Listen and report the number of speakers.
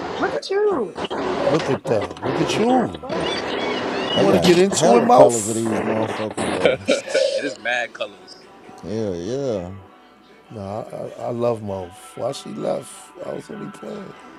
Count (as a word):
four